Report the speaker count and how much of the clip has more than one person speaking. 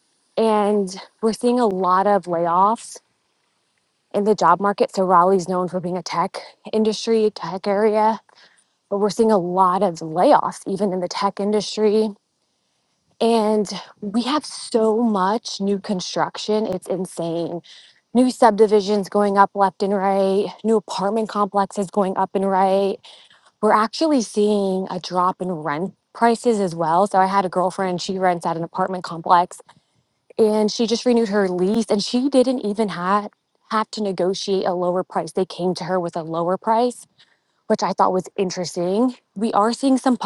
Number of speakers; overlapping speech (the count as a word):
one, no overlap